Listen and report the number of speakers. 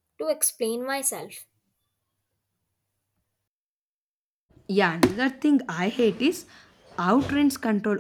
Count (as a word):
two